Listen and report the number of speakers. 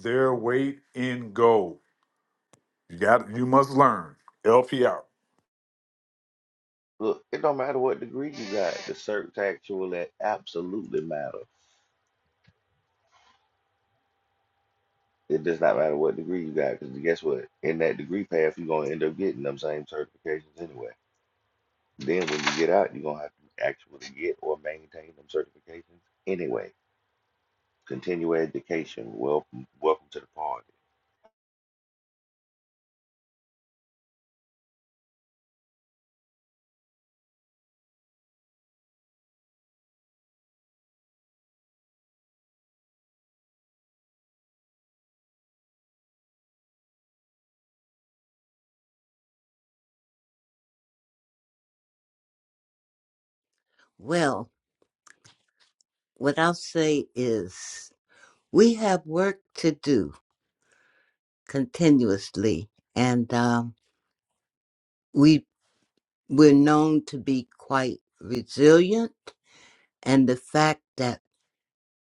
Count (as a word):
three